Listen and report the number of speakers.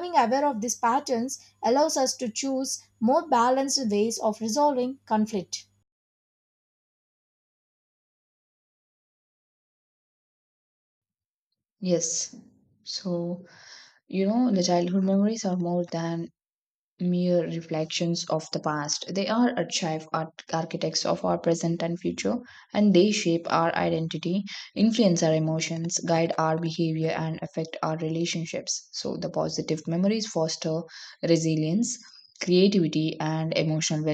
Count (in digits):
2